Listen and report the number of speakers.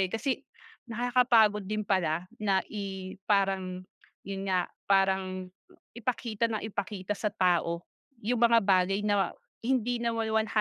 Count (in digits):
1